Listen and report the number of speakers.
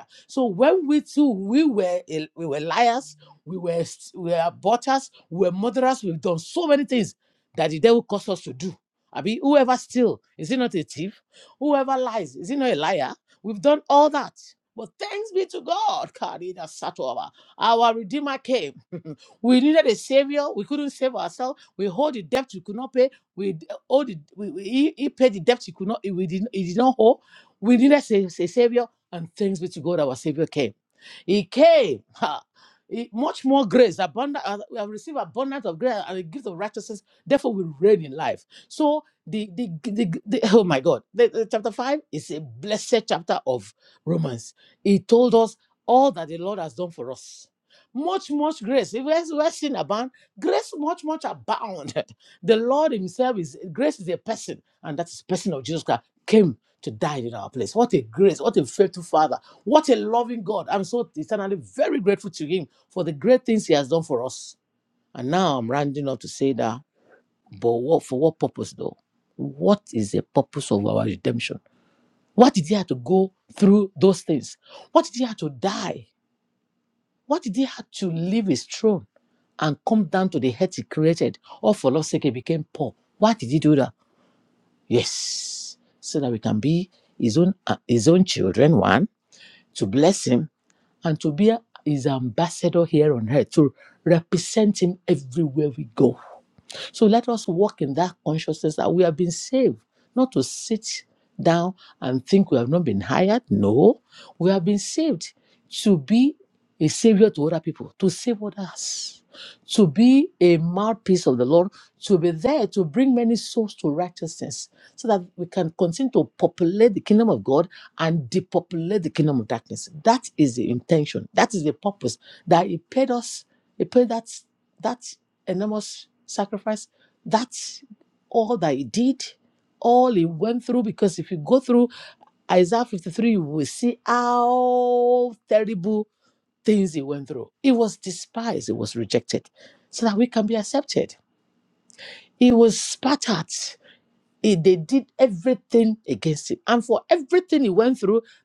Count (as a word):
one